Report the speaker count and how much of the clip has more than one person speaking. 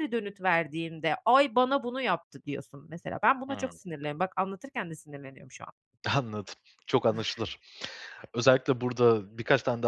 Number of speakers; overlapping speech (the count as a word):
two, about 2%